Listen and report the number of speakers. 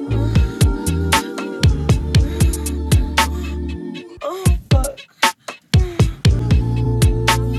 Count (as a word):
zero